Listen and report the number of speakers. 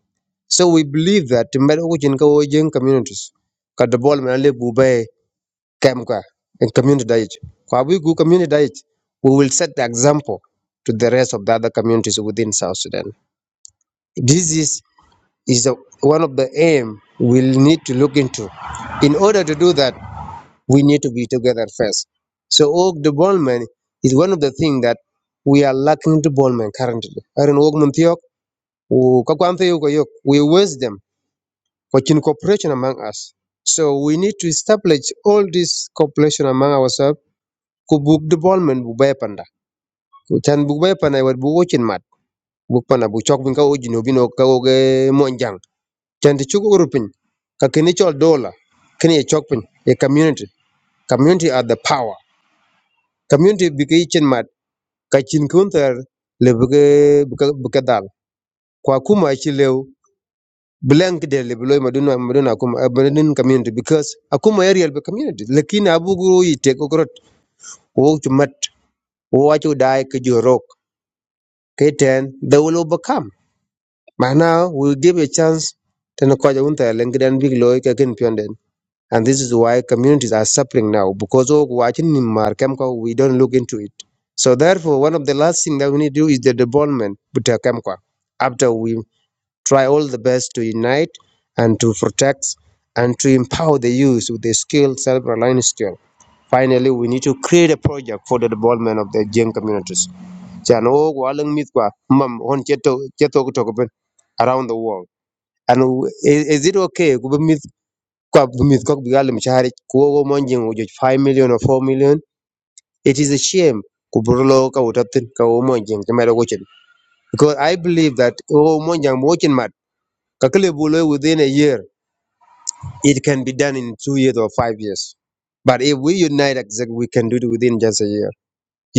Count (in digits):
1